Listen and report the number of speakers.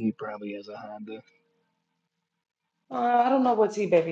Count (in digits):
2